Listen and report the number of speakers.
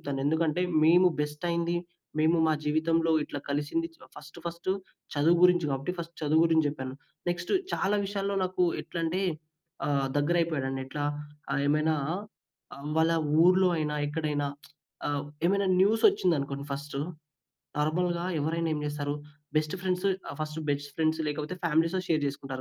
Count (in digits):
1